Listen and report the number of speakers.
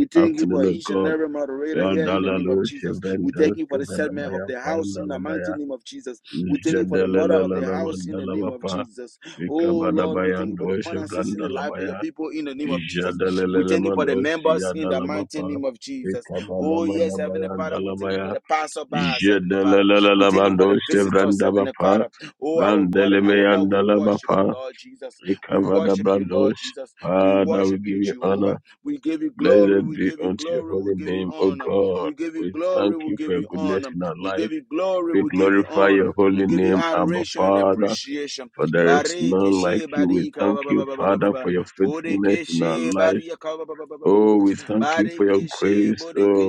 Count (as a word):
two